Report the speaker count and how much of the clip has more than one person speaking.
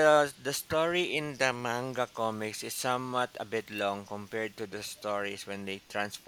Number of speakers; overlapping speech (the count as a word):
one, no overlap